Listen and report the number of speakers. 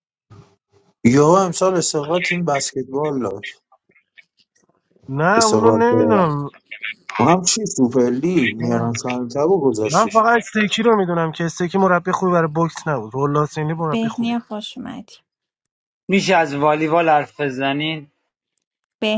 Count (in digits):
4